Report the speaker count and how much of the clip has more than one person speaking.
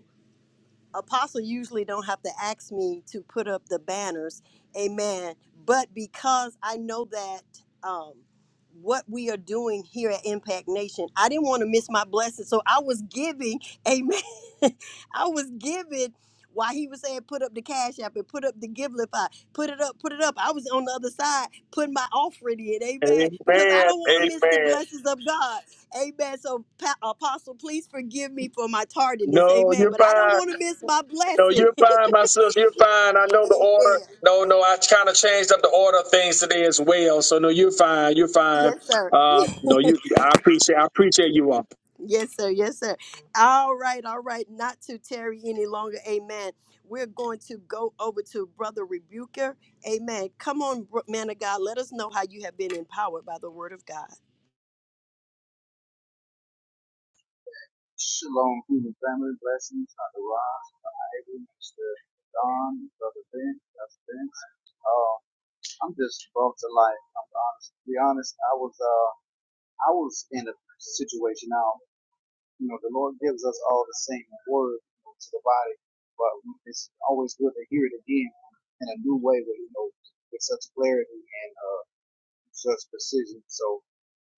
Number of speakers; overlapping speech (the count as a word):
three, about 5%